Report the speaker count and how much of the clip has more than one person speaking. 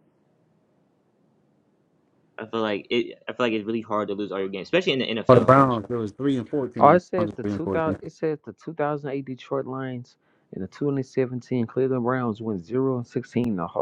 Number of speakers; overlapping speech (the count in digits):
3, about 10%